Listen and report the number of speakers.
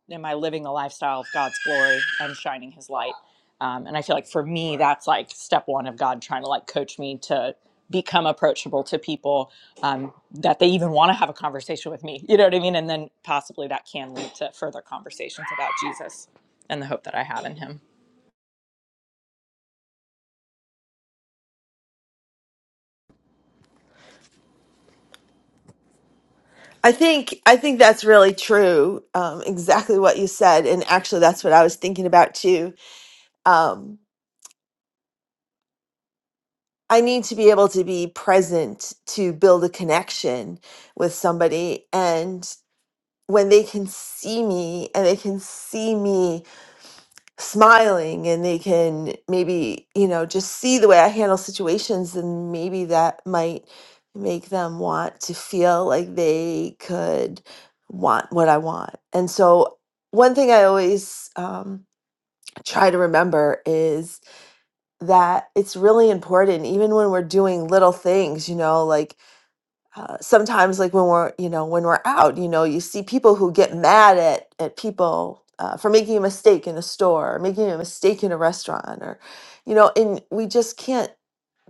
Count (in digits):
2